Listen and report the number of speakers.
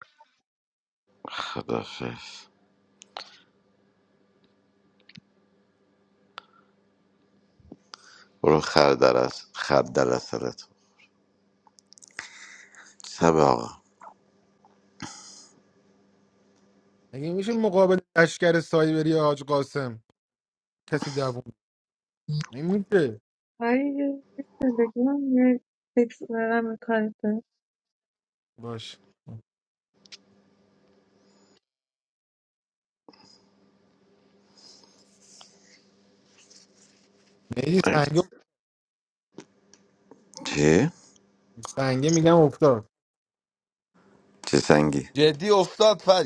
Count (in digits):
4